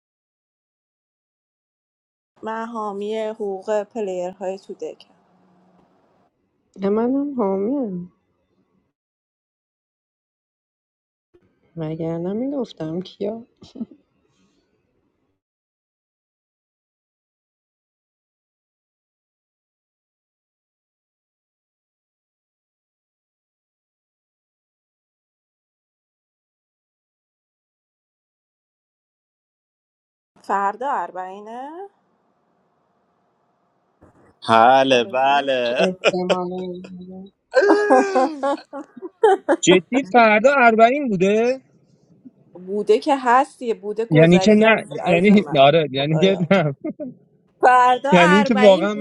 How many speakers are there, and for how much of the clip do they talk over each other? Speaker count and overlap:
4, about 8%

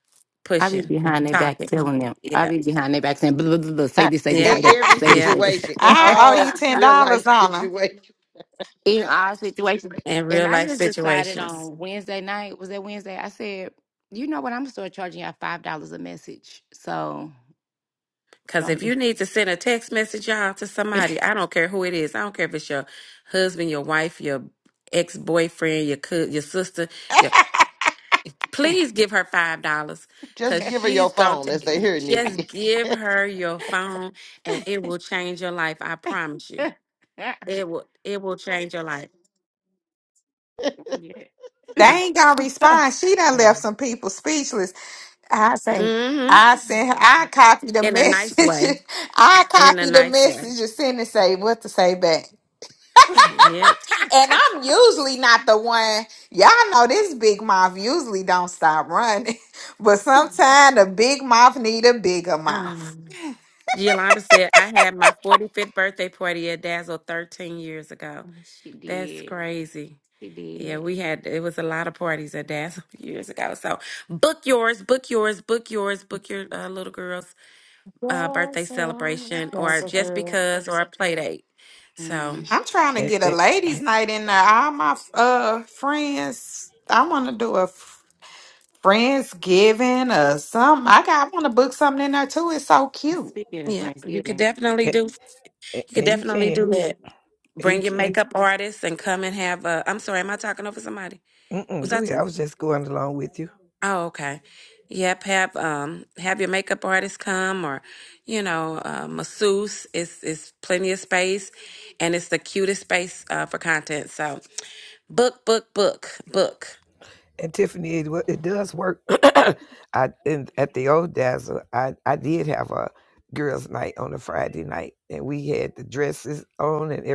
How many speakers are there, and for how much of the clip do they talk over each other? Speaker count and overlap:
5, about 12%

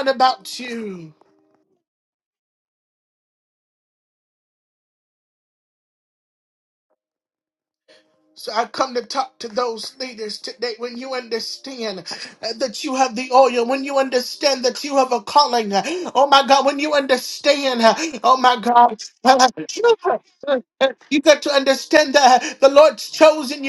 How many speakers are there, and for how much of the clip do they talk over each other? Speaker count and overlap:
1, no overlap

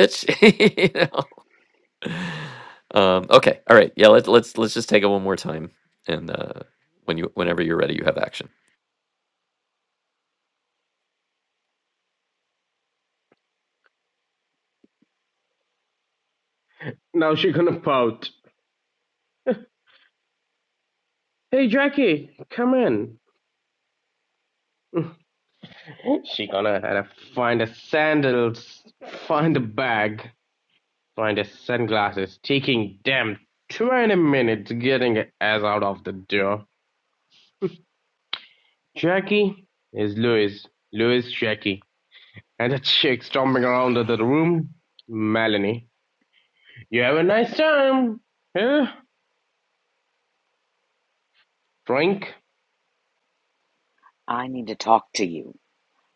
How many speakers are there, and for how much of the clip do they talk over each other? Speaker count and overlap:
3, no overlap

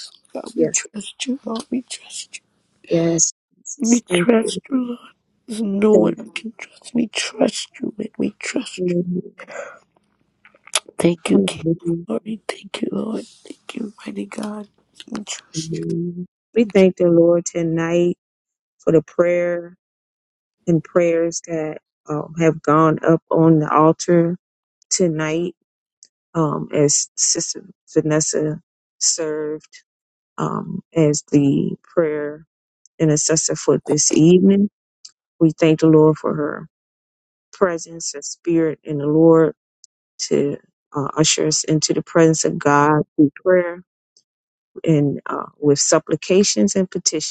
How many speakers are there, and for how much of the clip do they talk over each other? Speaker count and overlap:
2, about 4%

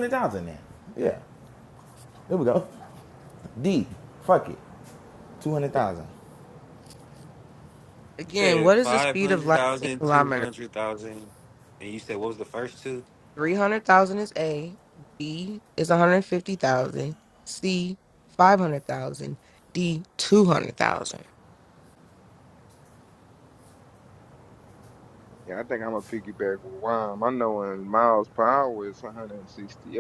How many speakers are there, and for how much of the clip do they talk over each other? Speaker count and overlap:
4, about 7%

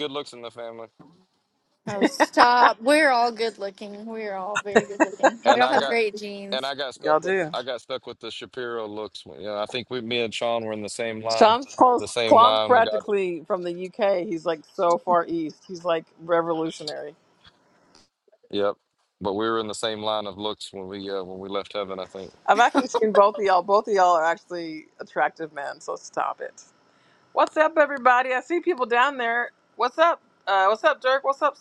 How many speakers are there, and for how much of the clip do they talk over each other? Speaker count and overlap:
3, about 8%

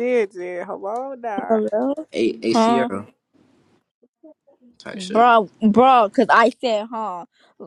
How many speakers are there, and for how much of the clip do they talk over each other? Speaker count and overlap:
3, about 11%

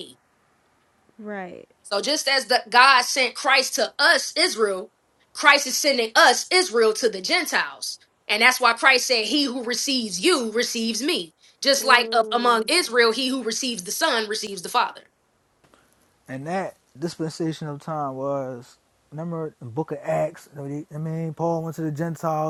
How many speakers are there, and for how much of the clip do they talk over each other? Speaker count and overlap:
3, about 4%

